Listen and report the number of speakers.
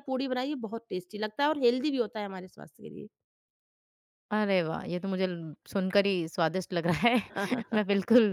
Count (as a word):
two